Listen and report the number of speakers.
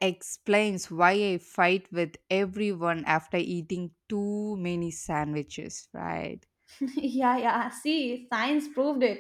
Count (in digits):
2